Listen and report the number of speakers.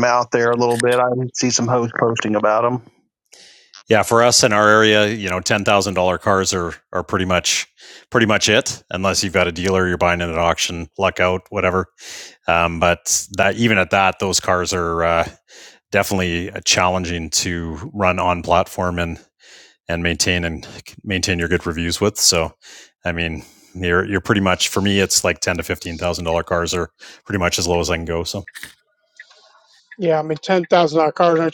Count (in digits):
3